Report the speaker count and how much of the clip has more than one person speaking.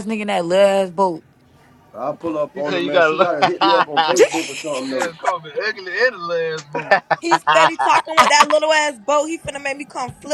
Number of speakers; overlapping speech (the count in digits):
4, about 17%